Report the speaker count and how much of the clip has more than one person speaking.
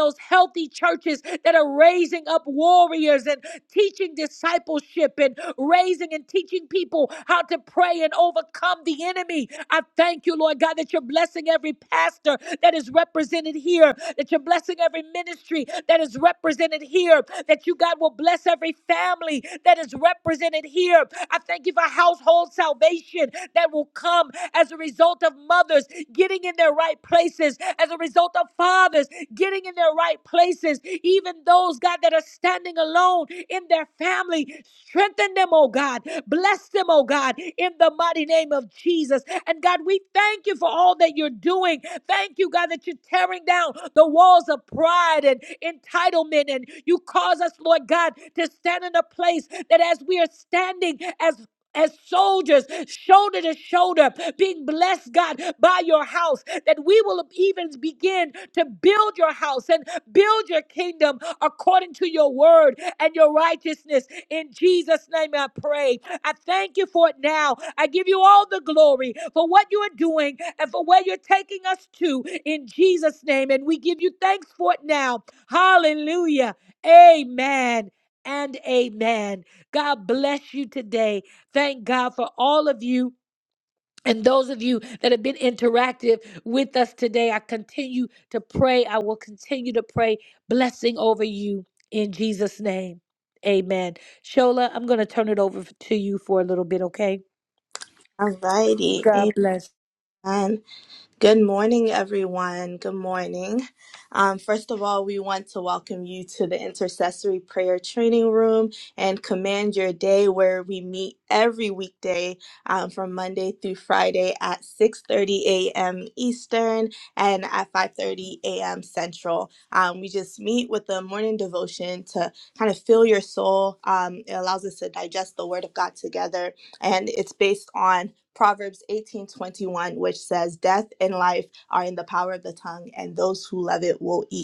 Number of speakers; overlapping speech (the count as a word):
two, under 1%